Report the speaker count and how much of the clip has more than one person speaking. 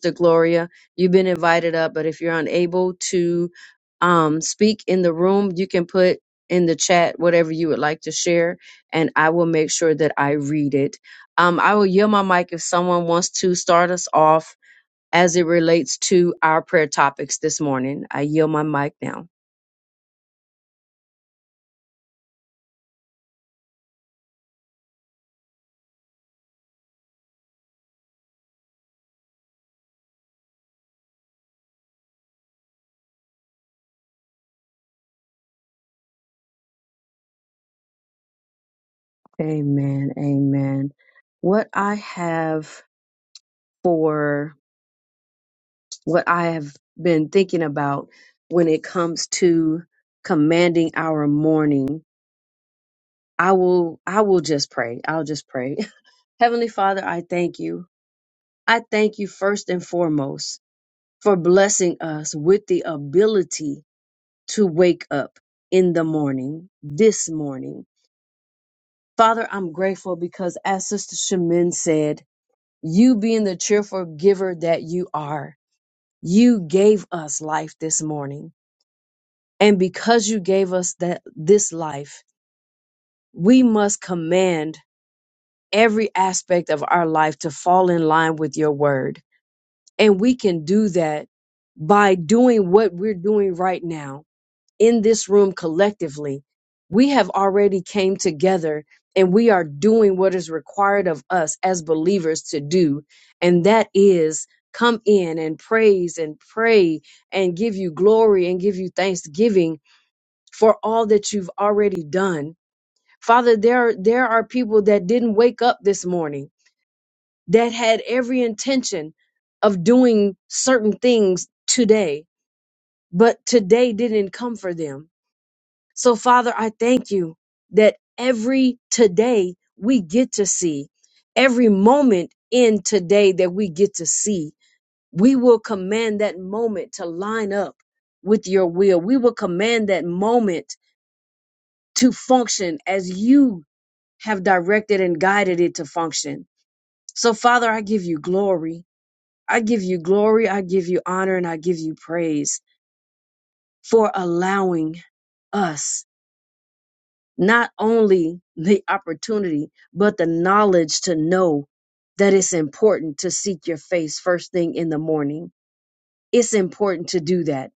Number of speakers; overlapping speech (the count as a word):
one, no overlap